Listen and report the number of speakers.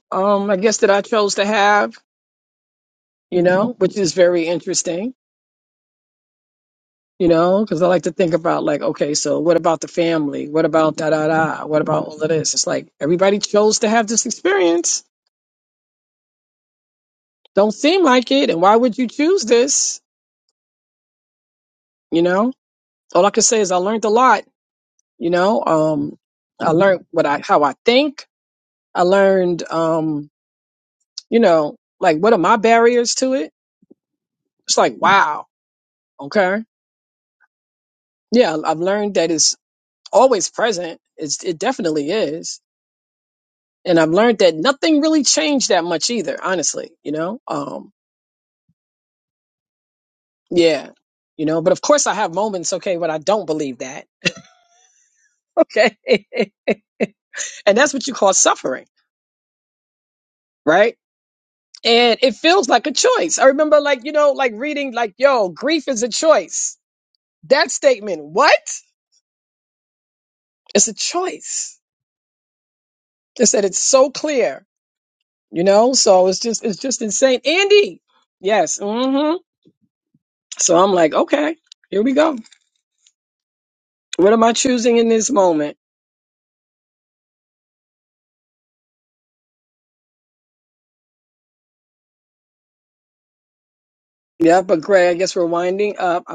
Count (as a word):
one